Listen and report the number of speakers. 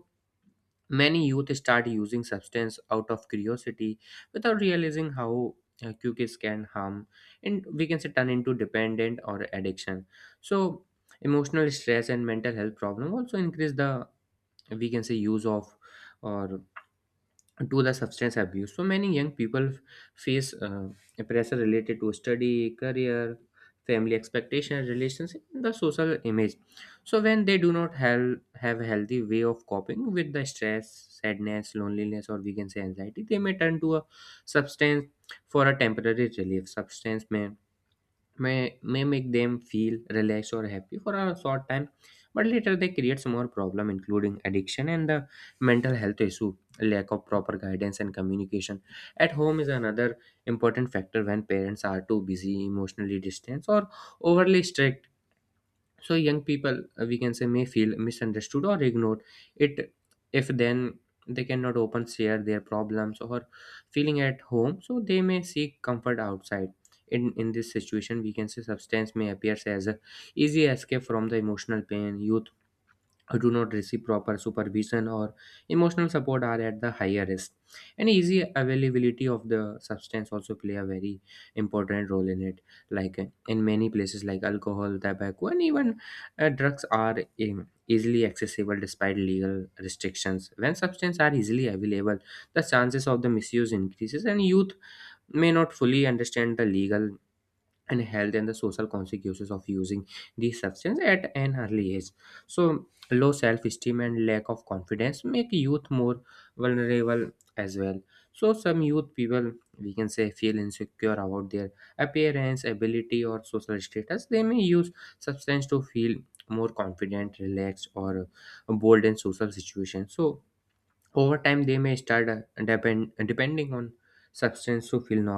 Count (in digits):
1